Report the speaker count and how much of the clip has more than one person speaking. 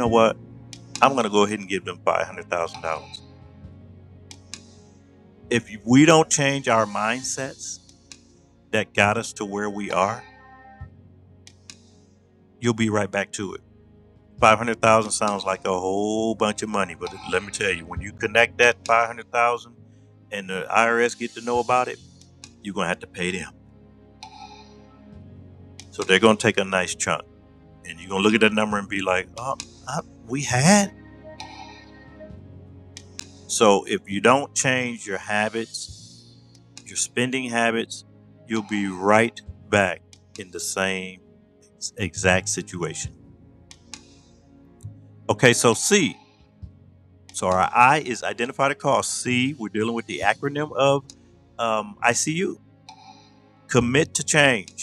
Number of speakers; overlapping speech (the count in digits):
1, no overlap